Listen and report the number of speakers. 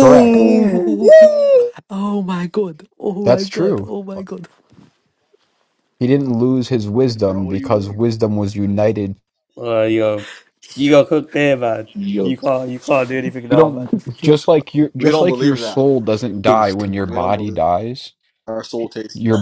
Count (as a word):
four